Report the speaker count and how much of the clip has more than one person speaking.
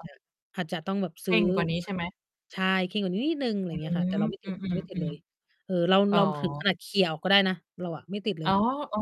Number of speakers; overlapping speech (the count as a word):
two, about 14%